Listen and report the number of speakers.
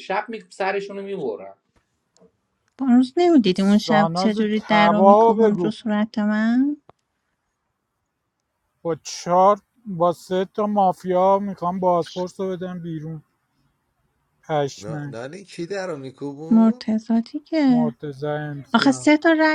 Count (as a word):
four